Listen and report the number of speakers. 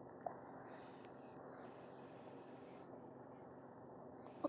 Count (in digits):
0